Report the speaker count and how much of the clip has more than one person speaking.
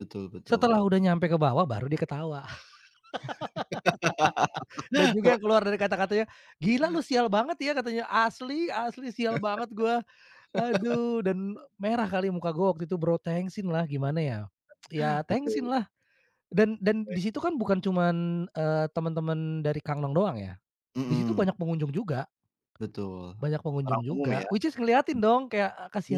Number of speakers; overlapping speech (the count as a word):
two, about 7%